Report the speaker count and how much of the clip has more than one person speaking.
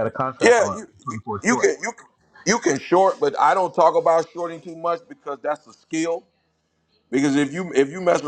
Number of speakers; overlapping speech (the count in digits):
2, about 15%